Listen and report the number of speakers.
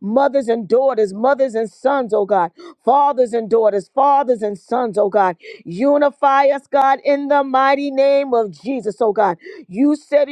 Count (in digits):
1